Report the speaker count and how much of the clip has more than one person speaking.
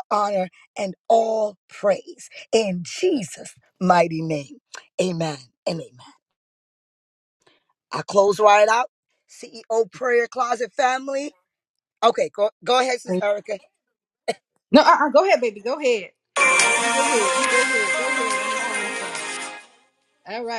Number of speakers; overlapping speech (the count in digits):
2, about 1%